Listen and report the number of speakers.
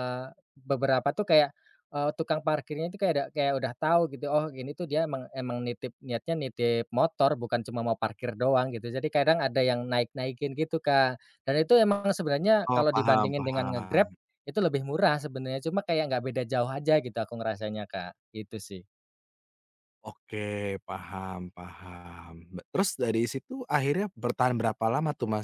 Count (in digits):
2